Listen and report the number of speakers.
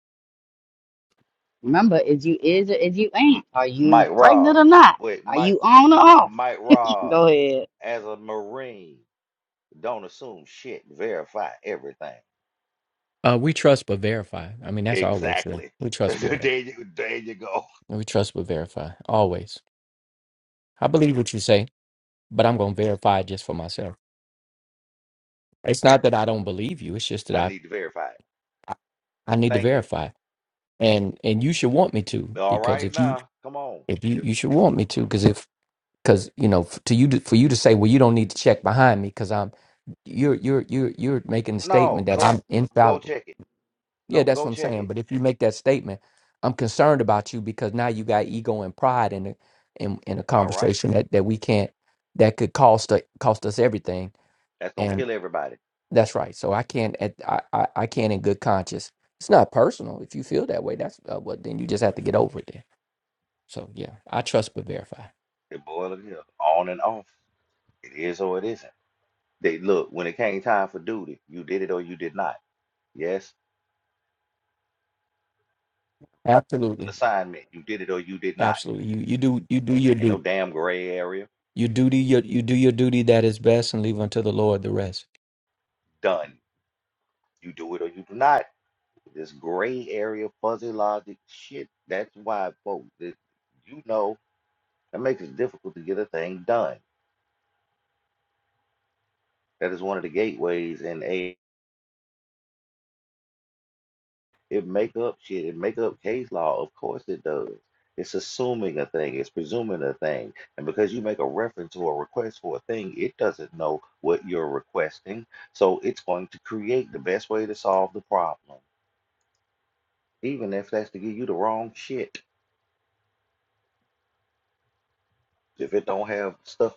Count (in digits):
3